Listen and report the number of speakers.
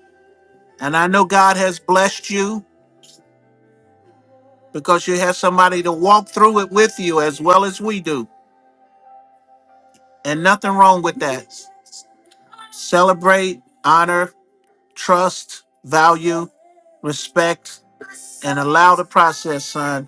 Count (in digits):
1